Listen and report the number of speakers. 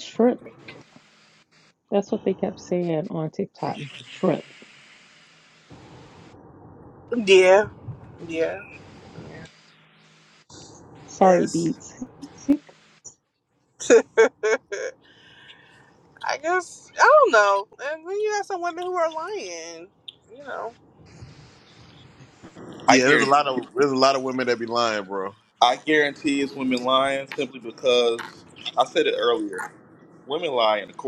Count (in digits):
4